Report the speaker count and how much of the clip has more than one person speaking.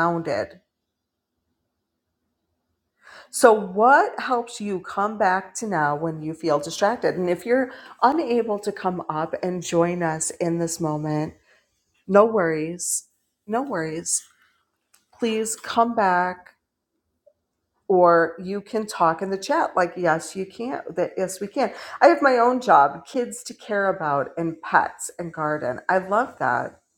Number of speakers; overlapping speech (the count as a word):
one, no overlap